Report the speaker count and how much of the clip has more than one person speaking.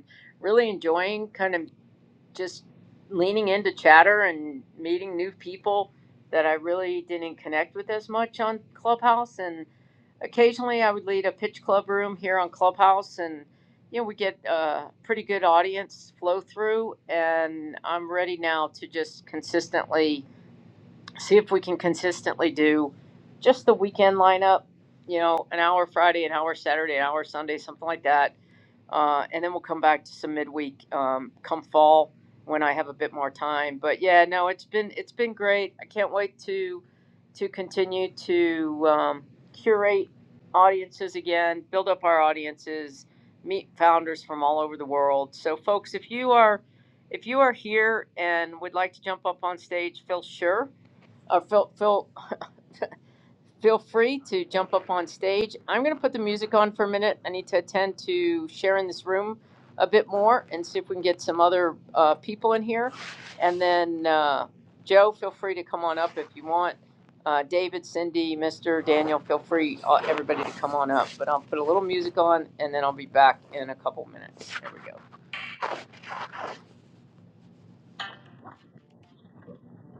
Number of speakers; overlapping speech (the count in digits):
1, no overlap